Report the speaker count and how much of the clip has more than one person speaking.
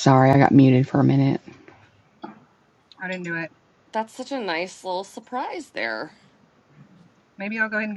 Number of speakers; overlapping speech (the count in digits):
3, no overlap